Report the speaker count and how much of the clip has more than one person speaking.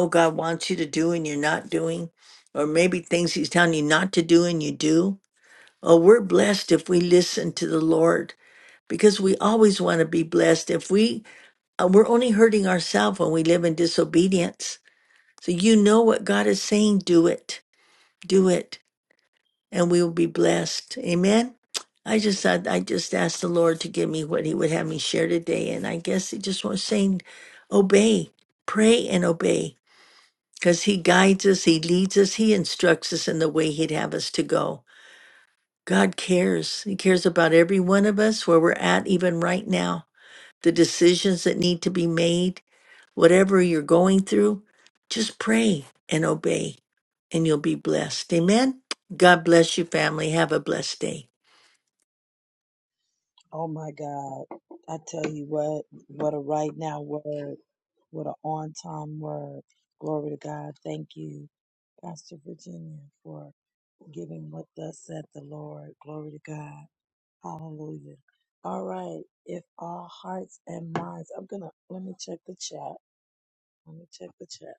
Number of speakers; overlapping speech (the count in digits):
2, no overlap